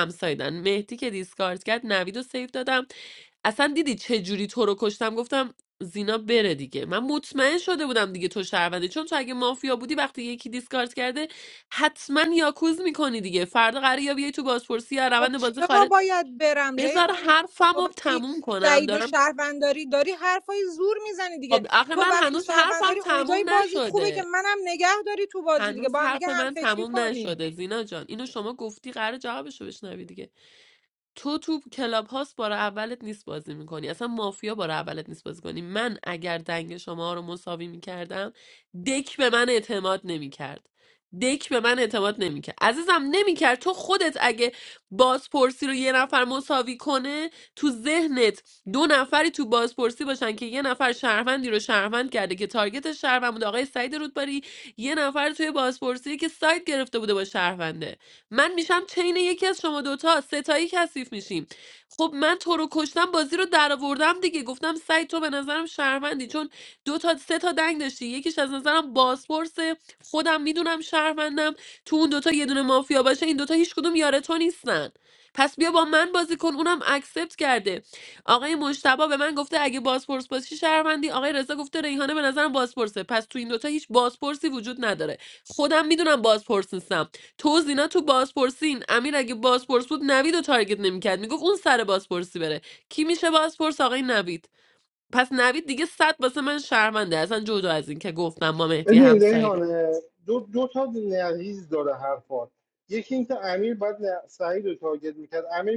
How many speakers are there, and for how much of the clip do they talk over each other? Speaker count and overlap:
3, about 7%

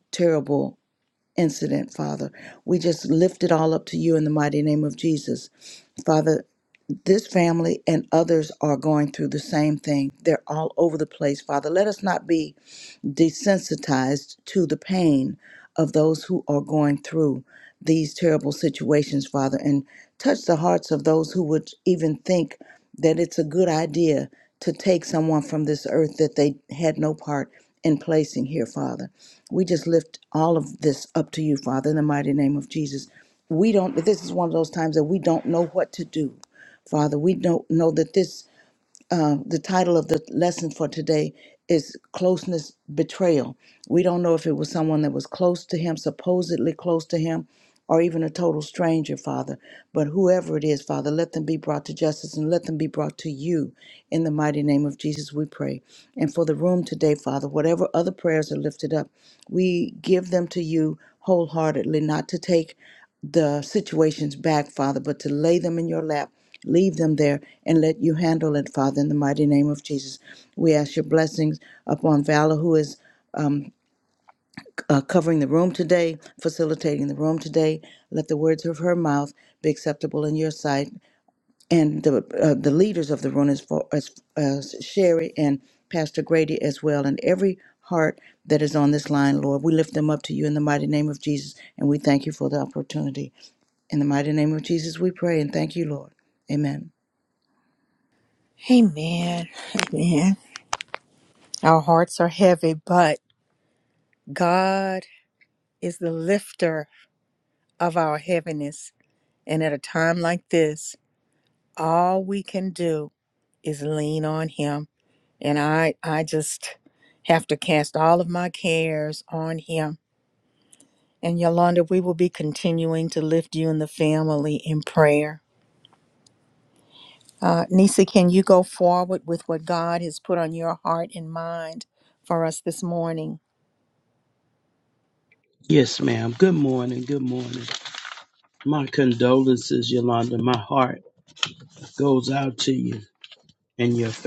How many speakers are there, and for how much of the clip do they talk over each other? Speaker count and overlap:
3, no overlap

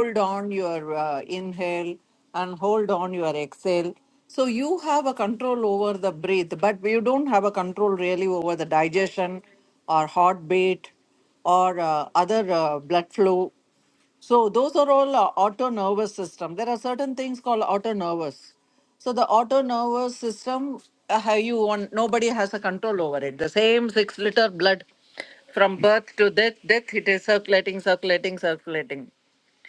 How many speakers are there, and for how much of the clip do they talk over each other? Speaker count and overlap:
1, no overlap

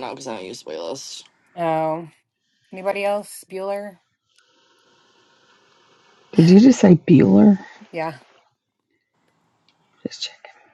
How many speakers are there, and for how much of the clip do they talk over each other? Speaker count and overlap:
3, no overlap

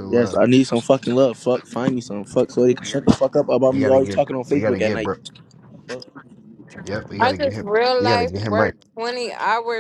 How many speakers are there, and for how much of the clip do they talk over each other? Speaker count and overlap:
3, about 33%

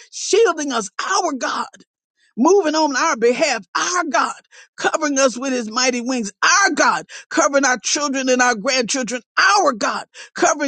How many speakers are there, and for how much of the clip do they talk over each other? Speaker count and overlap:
1, no overlap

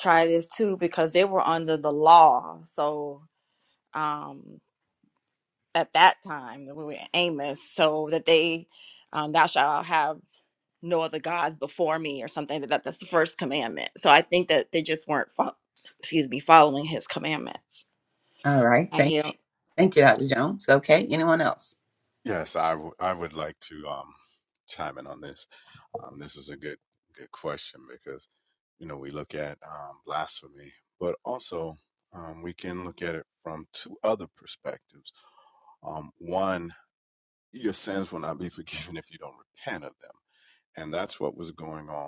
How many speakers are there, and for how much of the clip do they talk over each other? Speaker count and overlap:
3, under 1%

